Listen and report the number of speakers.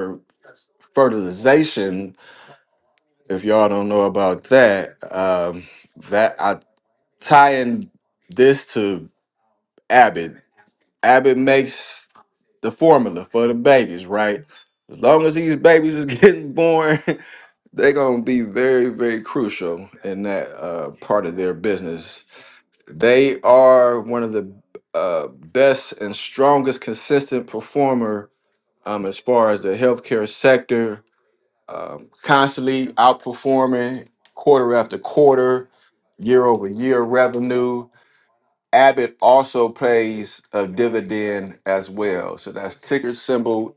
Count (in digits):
1